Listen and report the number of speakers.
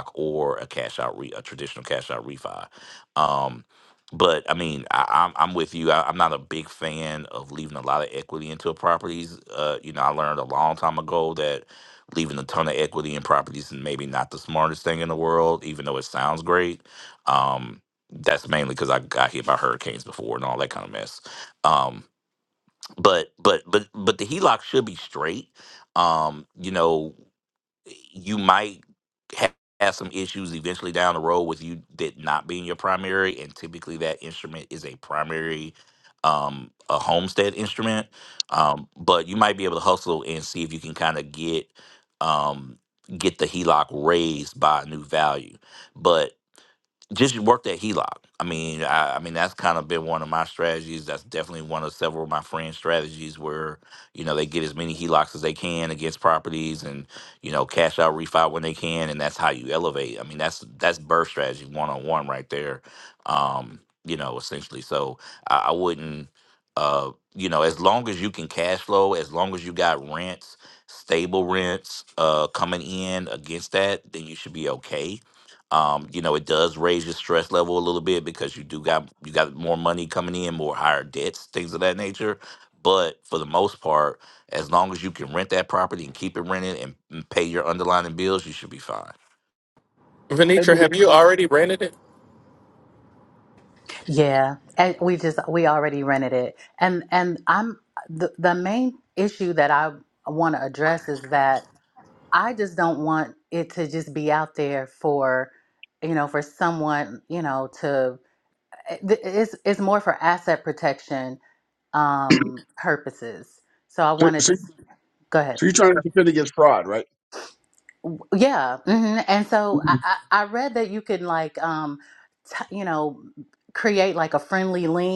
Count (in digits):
4